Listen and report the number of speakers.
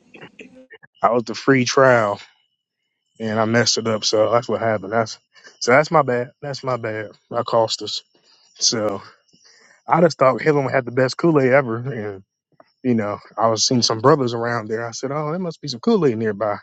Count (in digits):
1